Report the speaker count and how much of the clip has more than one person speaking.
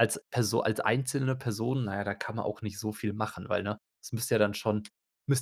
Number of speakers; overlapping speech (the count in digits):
1, no overlap